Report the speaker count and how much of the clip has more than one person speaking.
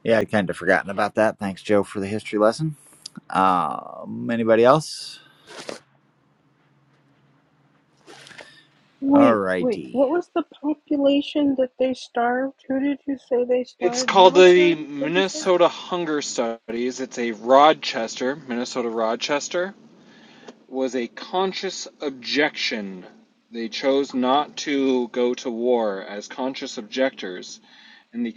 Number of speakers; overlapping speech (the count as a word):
three, about 9%